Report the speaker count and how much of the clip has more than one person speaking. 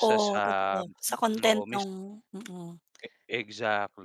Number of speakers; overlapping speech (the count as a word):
two, about 24%